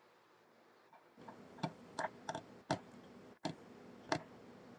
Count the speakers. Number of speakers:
0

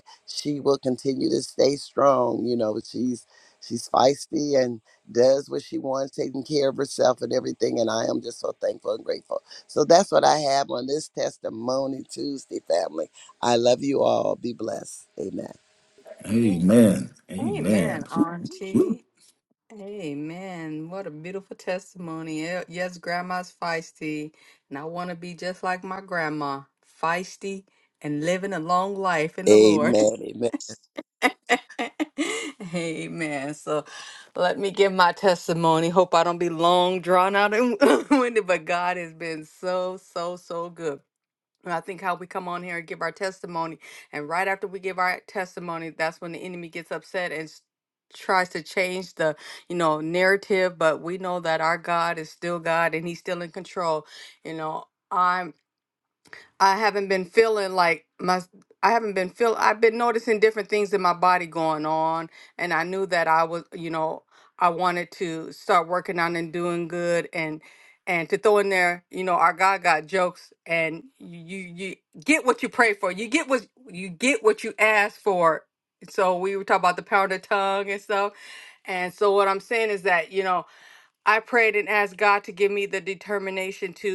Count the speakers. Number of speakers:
3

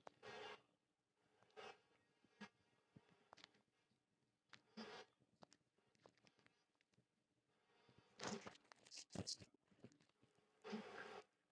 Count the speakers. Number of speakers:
0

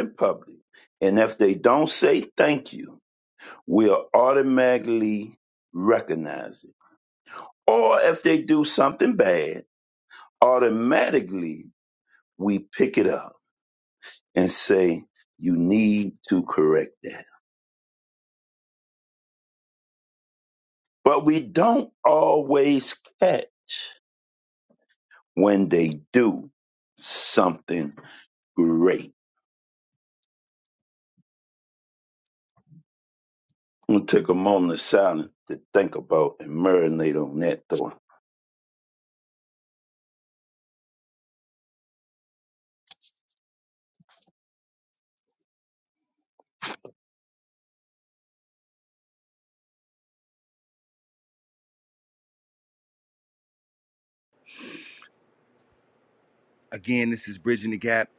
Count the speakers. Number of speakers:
2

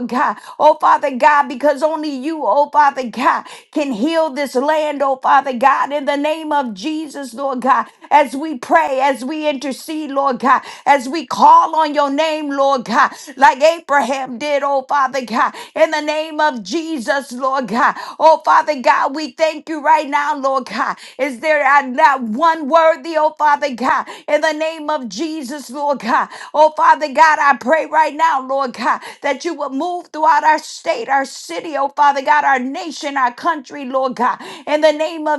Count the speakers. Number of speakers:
1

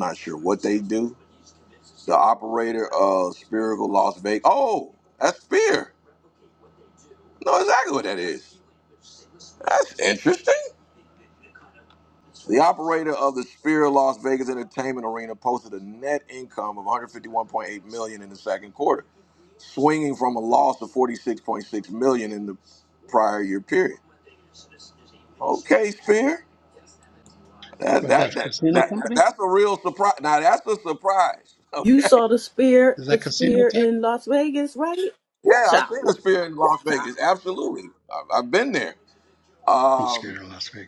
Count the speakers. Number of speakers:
3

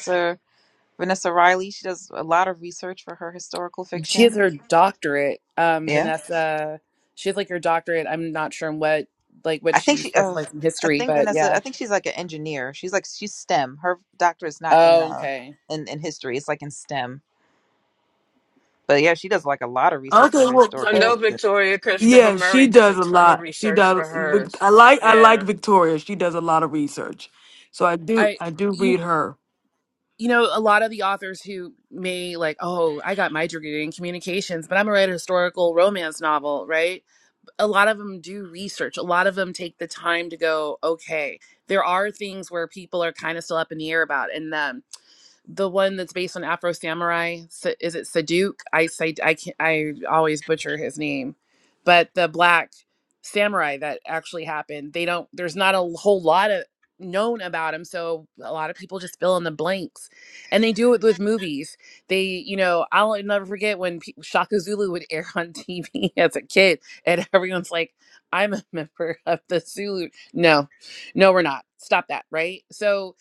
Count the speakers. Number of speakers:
4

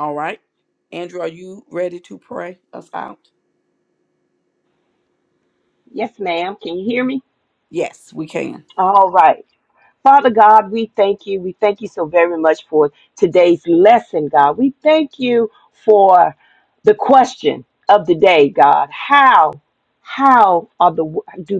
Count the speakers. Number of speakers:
2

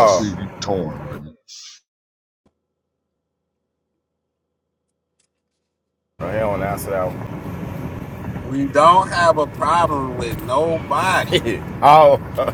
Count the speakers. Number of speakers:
3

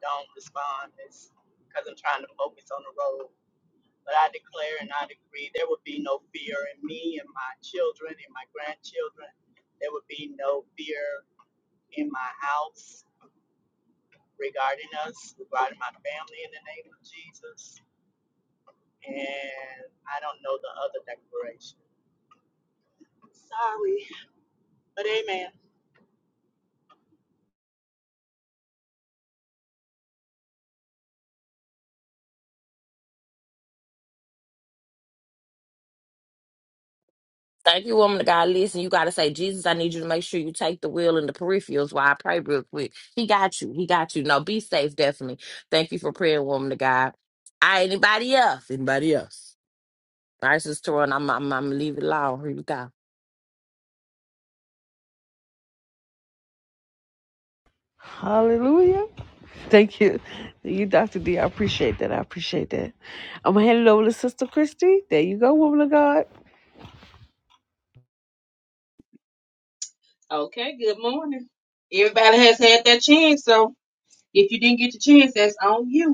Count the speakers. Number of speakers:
4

